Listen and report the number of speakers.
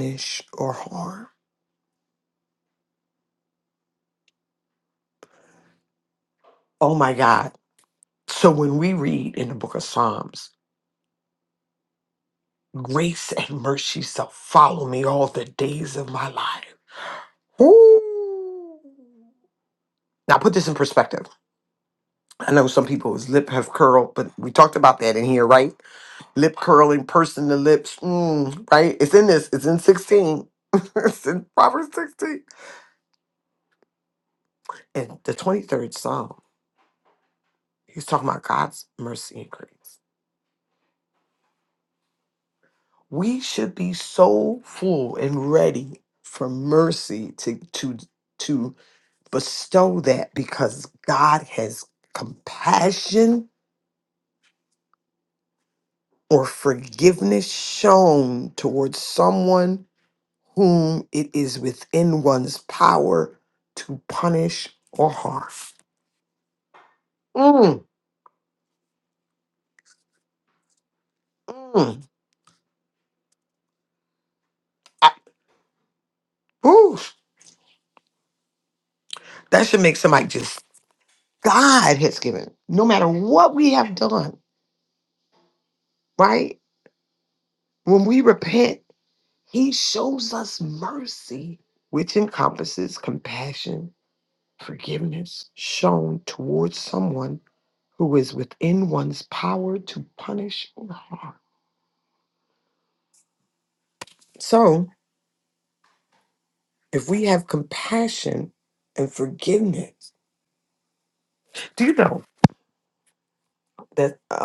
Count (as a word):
one